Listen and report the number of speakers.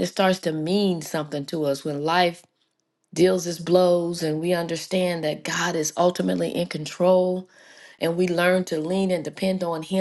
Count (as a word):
one